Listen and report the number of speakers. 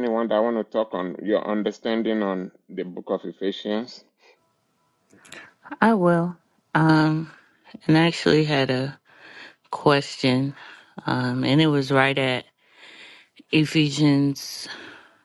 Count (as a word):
two